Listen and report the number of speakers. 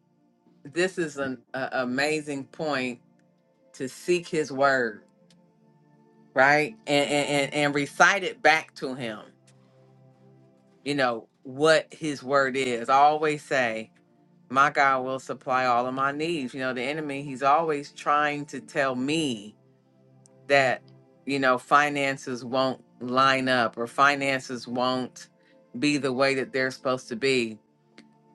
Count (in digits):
1